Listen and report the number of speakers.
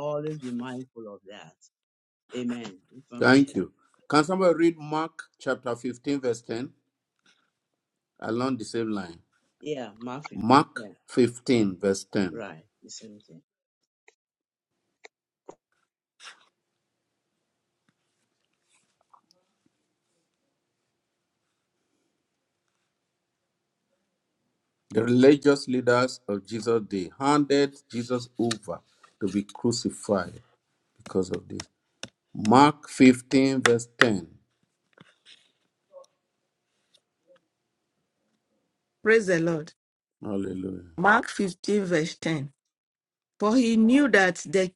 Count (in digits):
3